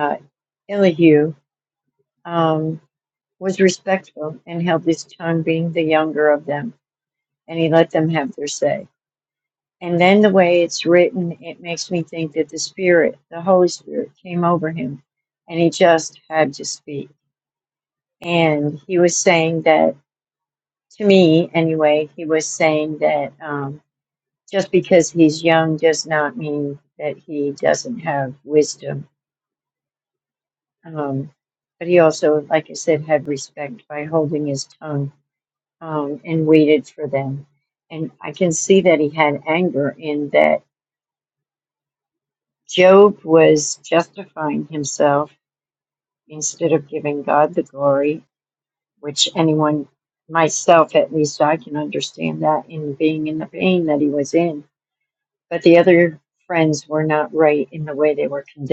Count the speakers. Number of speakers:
1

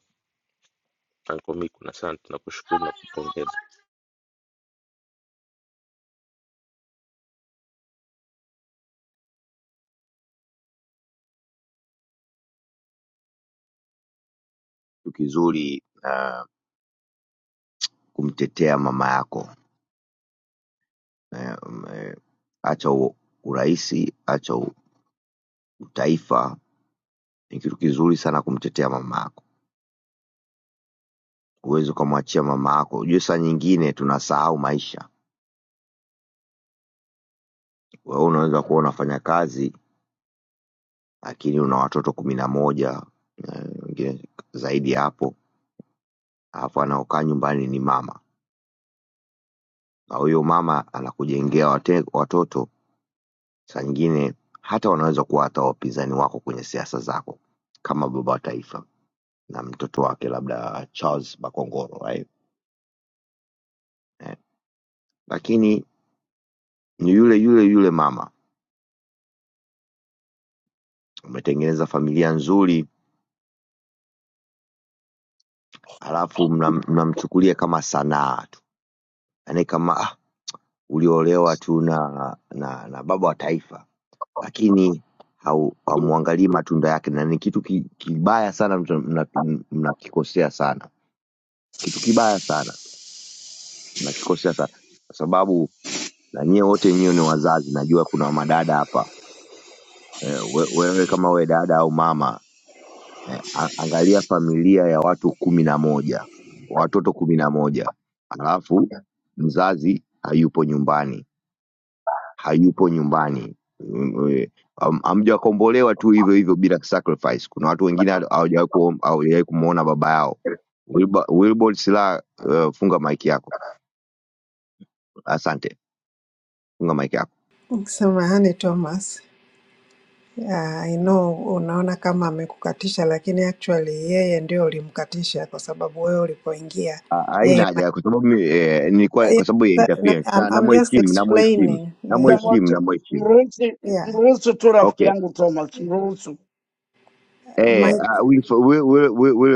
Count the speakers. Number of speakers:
4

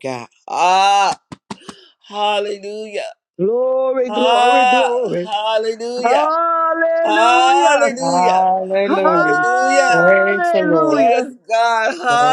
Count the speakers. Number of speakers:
3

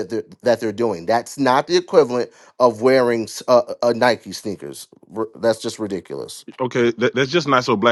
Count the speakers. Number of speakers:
2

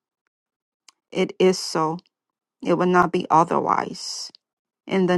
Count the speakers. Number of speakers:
1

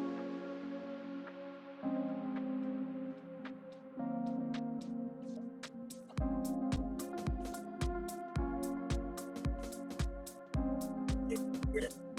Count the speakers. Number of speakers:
0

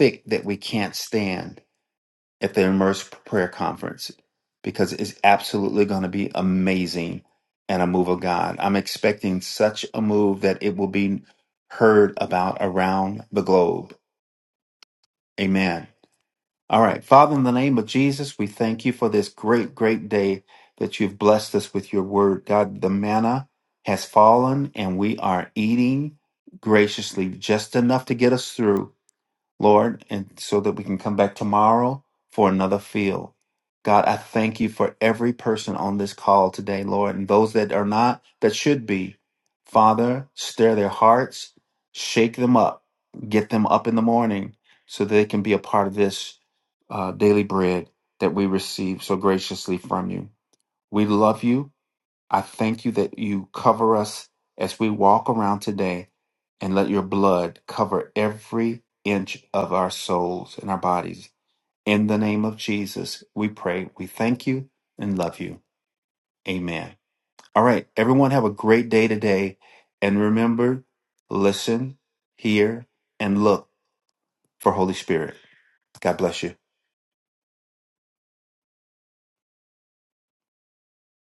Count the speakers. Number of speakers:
1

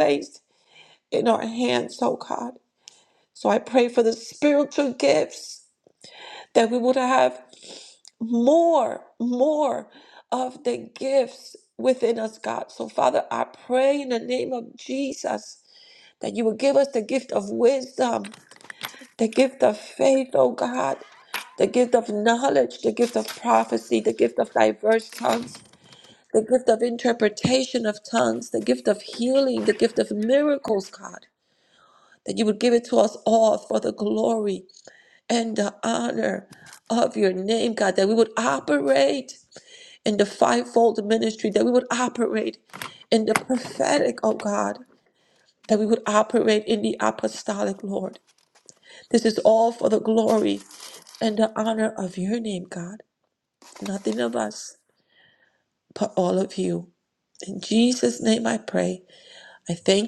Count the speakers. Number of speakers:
1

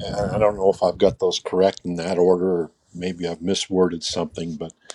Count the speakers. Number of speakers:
1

